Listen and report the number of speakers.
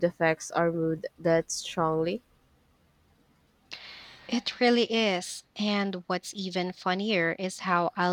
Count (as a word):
two